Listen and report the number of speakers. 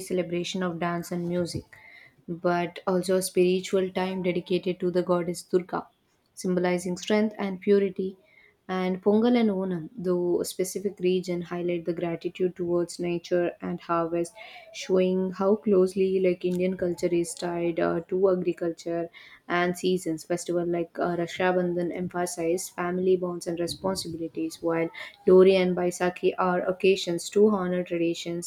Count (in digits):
1